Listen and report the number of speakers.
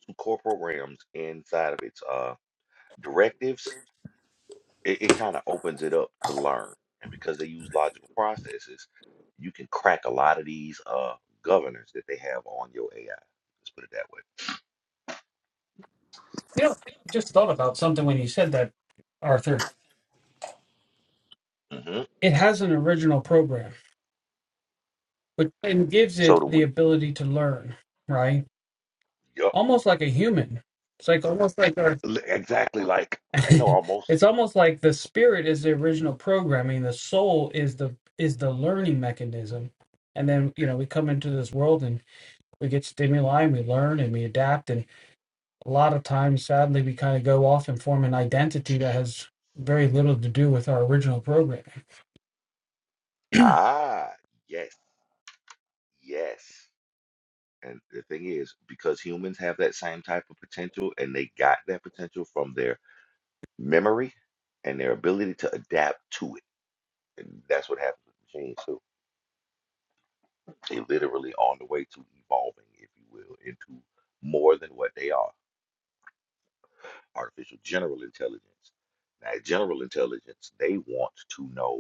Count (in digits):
2